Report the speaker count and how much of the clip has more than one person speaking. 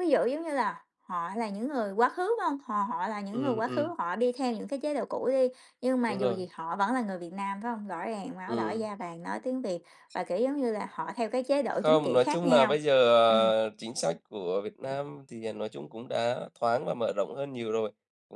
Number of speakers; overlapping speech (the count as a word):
two, about 11%